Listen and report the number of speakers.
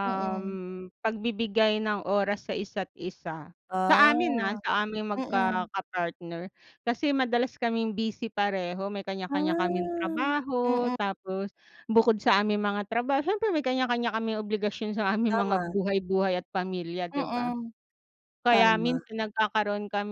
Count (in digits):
2